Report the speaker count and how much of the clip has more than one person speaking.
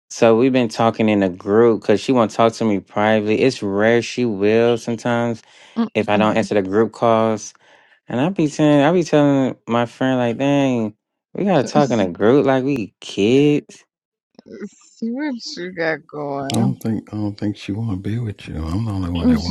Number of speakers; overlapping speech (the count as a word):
three, about 3%